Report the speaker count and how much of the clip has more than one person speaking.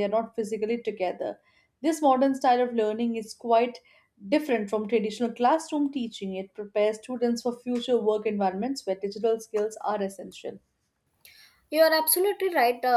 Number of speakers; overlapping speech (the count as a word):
two, no overlap